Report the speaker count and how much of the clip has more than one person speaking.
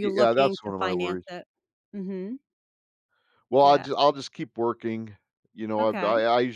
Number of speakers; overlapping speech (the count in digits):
2, about 30%